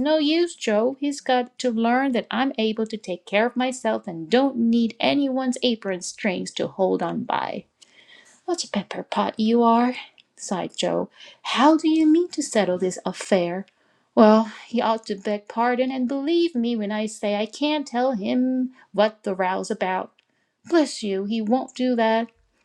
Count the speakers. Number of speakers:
1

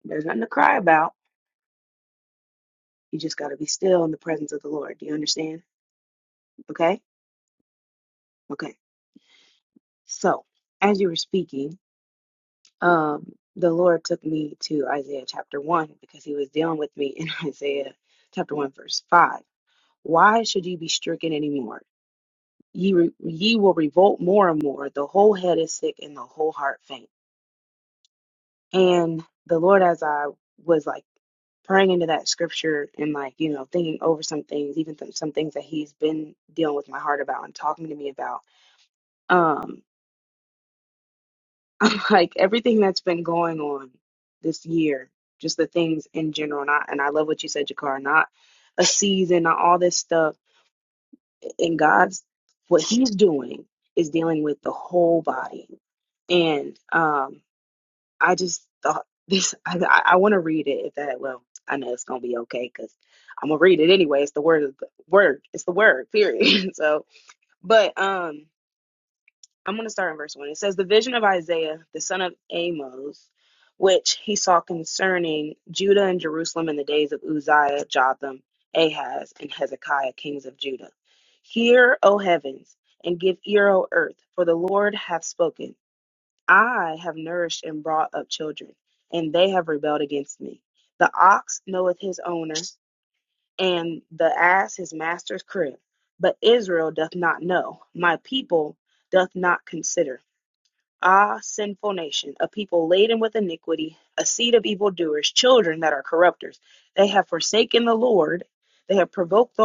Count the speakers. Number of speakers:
1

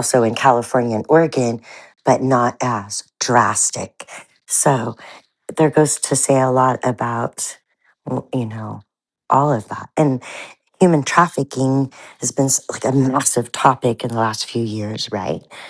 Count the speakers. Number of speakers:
1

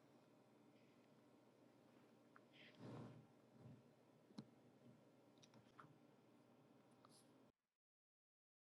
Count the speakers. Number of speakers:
0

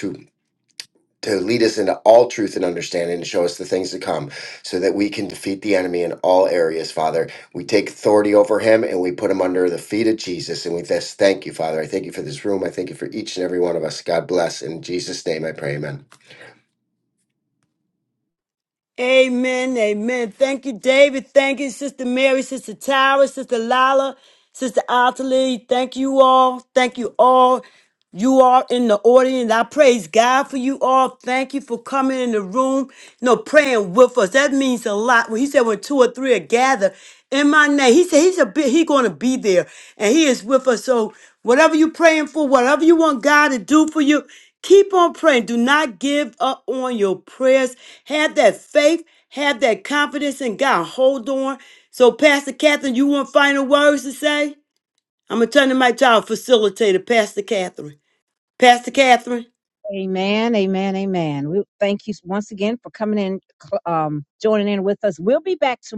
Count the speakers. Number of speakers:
3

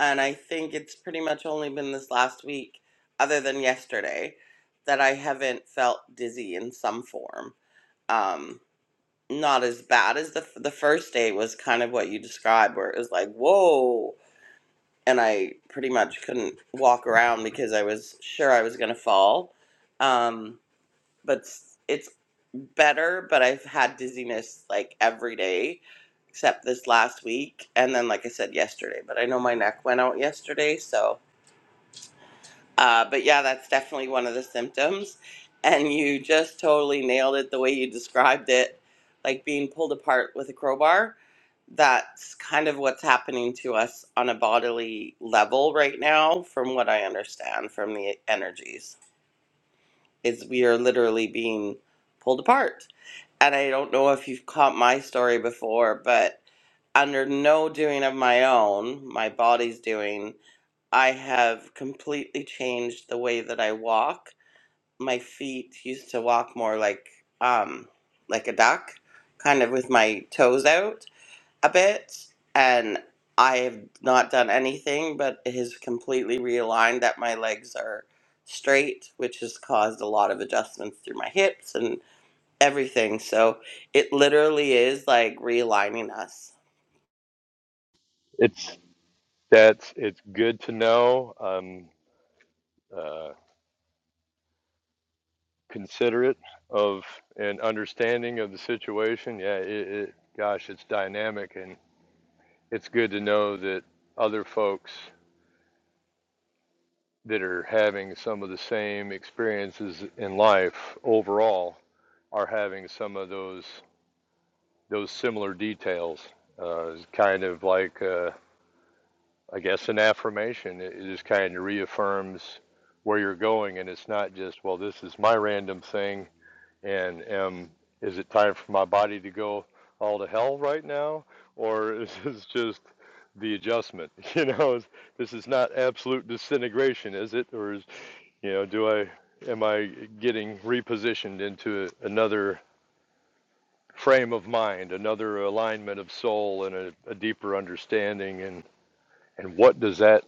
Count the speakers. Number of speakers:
2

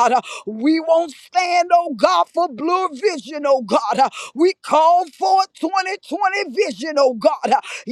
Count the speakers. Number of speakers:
1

